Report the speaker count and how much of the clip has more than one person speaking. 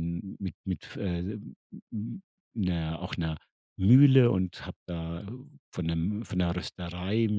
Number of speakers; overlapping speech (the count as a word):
one, no overlap